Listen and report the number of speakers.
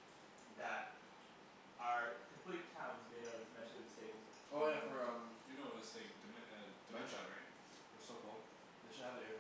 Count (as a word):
three